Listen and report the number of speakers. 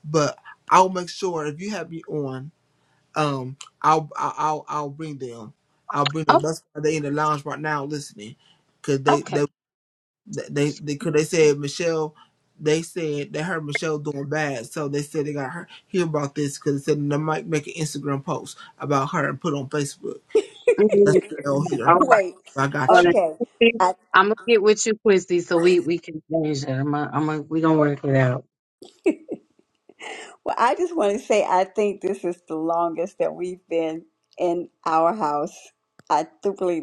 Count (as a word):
three